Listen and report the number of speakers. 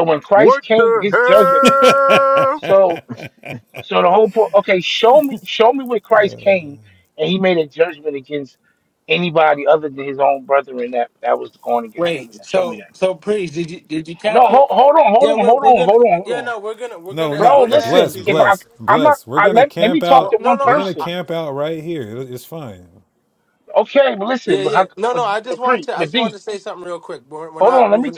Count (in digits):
4